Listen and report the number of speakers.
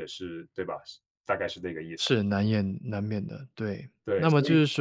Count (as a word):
two